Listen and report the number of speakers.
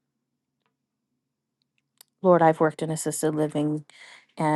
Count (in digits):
1